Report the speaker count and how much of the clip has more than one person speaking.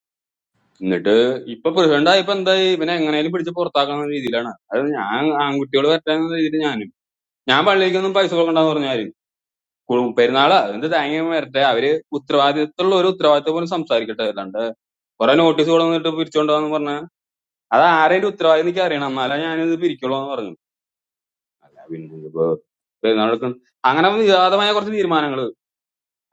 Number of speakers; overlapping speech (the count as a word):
one, no overlap